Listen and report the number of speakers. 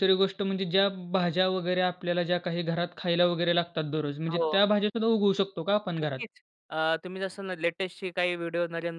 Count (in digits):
2